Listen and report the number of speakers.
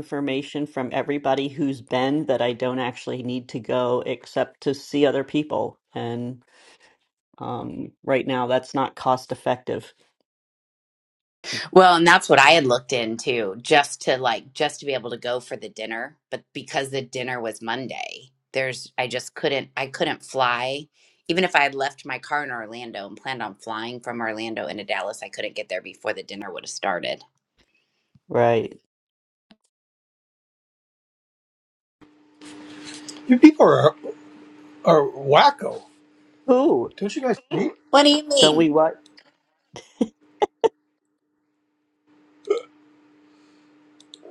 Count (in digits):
3